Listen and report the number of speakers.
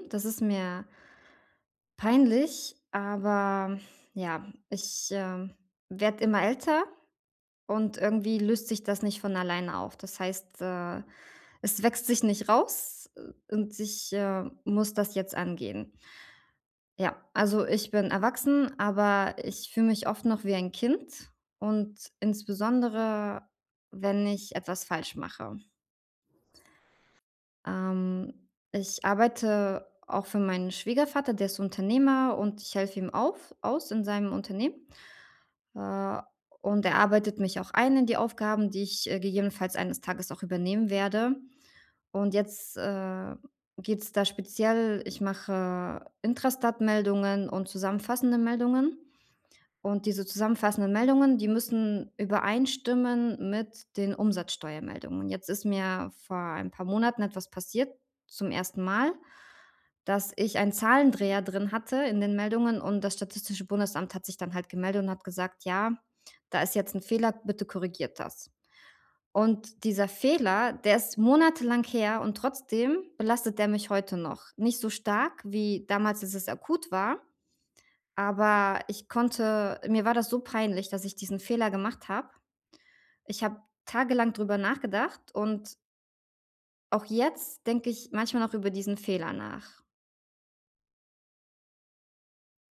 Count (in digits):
1